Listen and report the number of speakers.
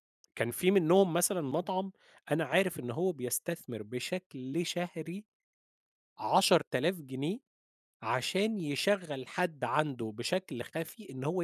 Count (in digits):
1